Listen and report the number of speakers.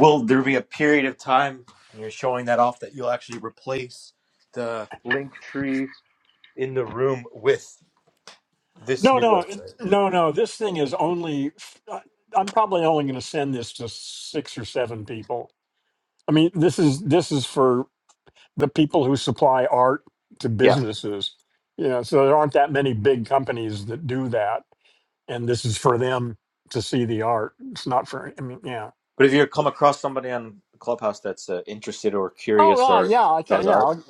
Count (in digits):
2